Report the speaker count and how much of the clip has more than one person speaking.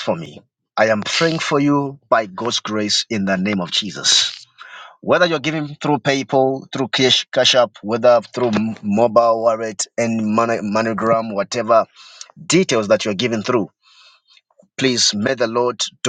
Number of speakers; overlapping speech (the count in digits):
1, no overlap